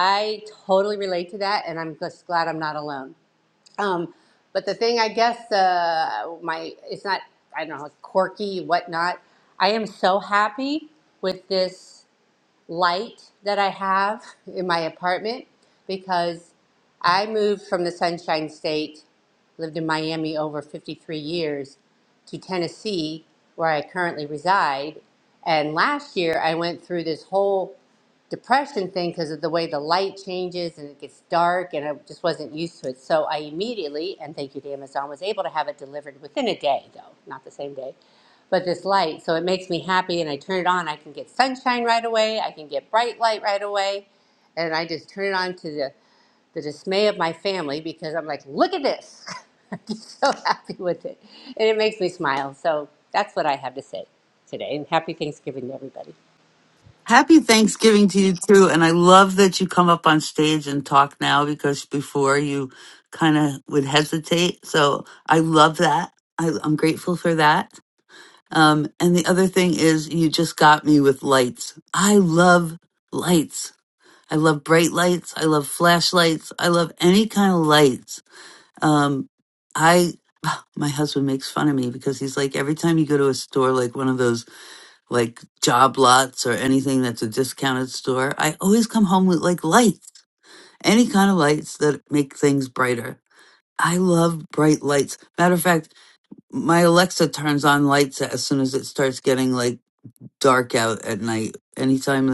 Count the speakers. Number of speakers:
2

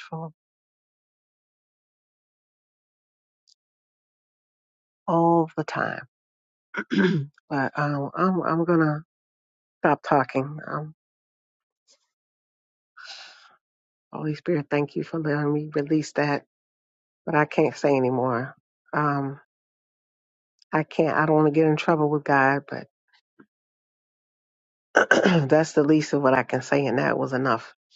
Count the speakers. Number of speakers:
1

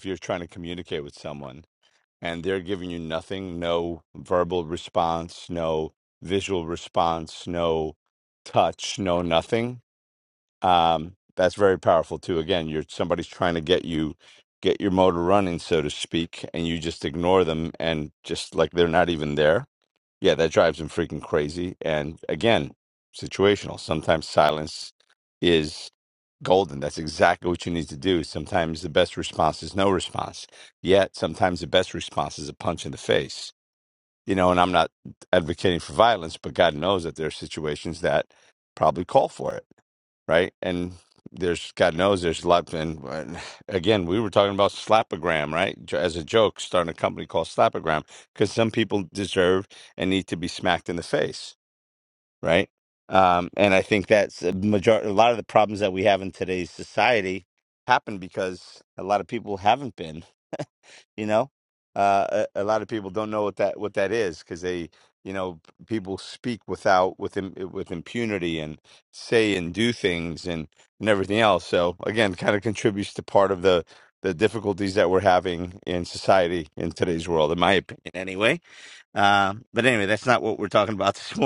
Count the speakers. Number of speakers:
1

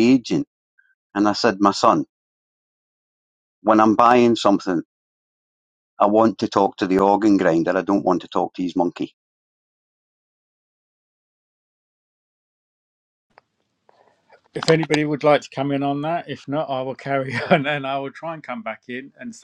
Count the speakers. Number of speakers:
2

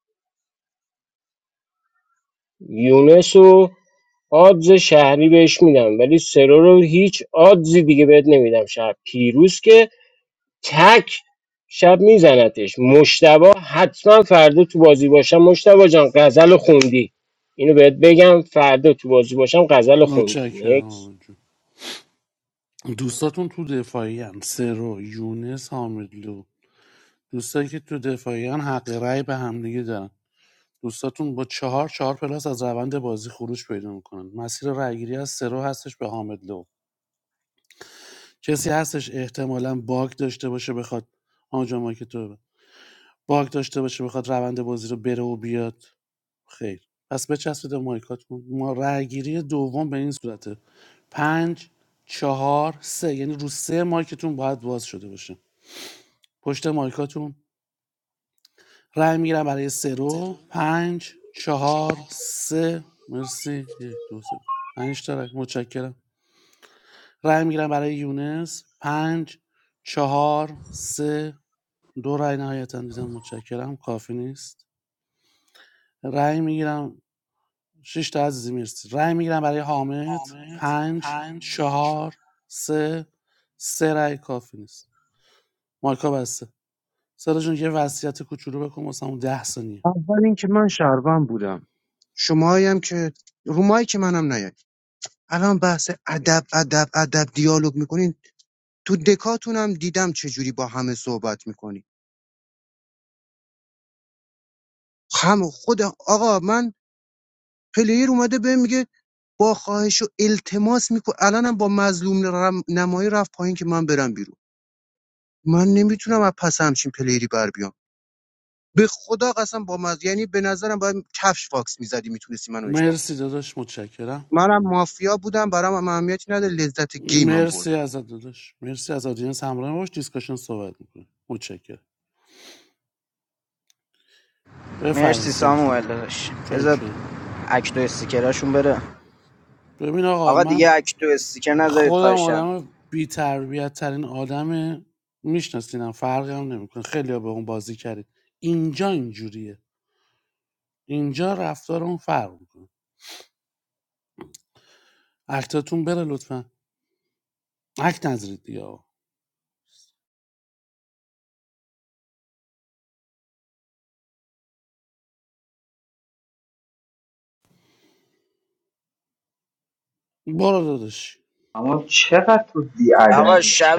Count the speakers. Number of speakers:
5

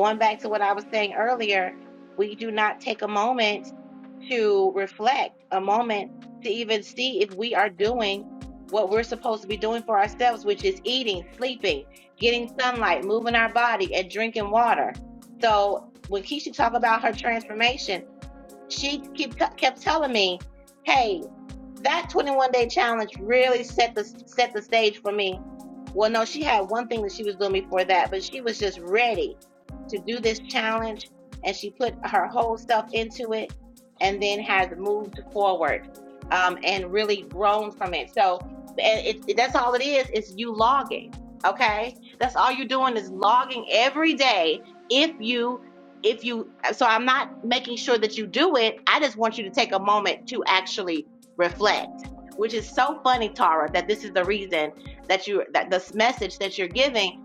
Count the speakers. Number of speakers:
1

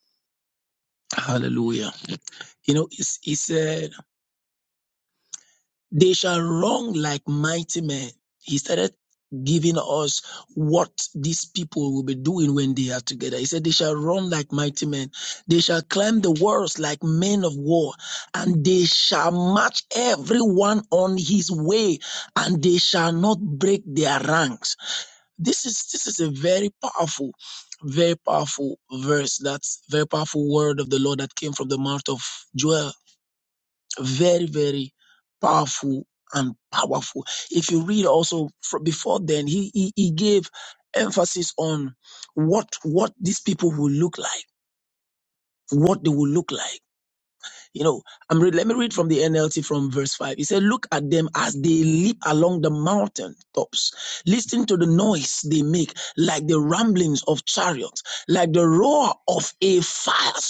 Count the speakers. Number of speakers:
1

